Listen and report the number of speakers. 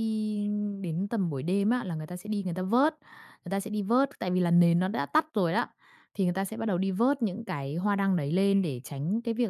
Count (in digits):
1